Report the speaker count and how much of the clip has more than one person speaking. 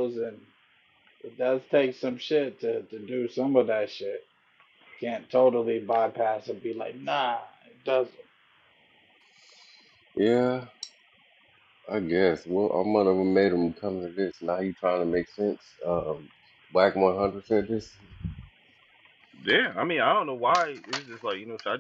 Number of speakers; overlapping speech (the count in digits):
3, no overlap